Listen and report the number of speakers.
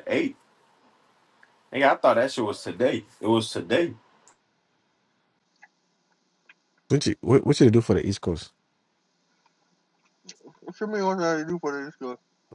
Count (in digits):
3